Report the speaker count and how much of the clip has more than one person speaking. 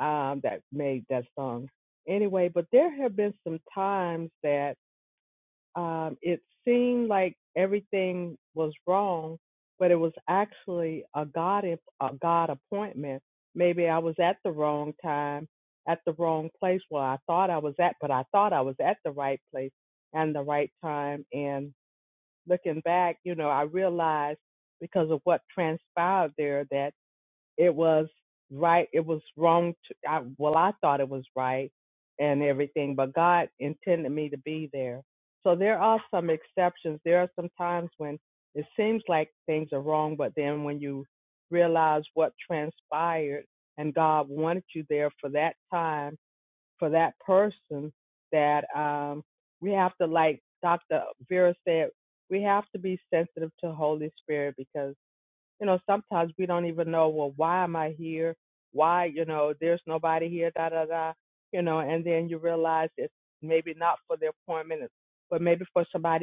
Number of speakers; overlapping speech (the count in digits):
1, no overlap